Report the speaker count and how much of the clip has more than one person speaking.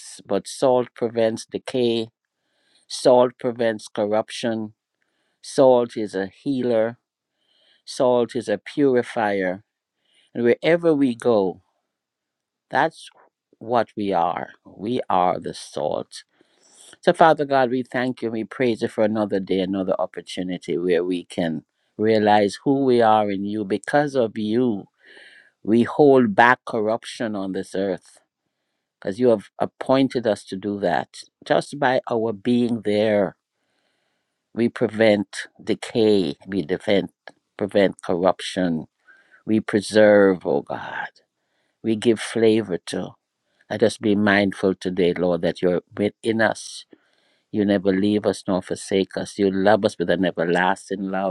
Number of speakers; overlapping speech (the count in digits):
1, no overlap